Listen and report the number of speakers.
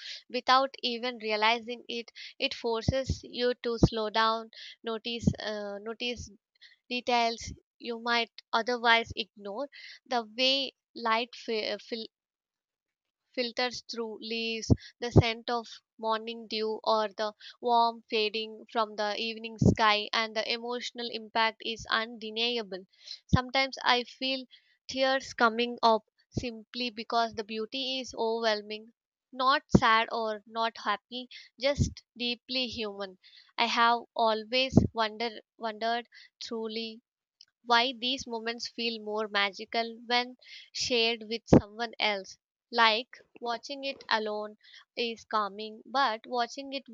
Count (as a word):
one